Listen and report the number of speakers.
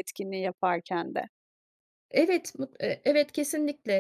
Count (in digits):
2